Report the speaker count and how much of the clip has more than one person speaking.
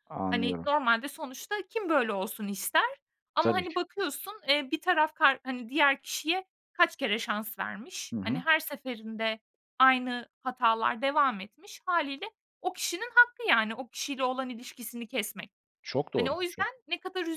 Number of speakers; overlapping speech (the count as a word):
two, about 9%